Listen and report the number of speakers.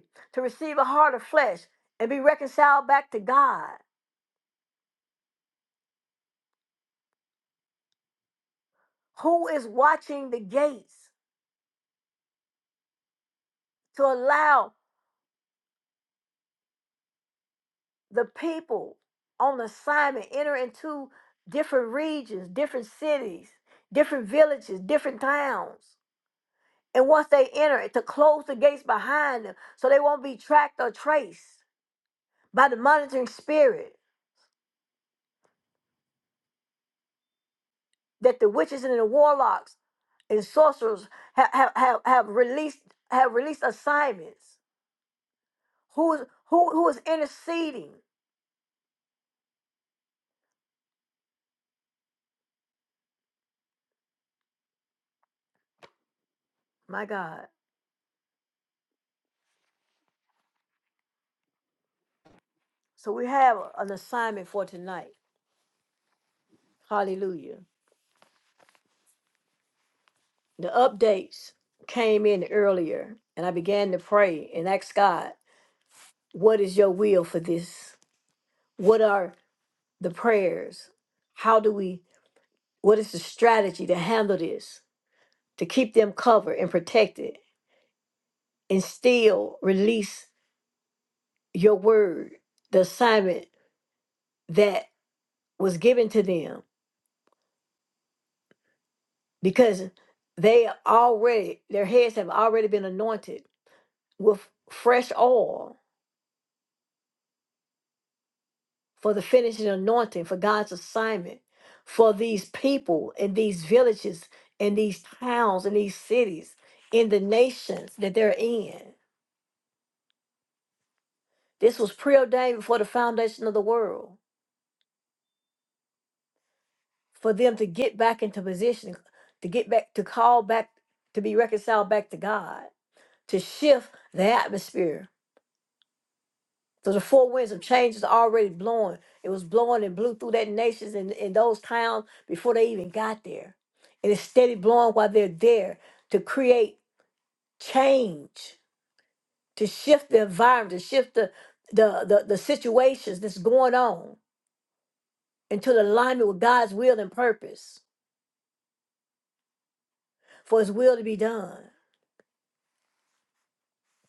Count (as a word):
one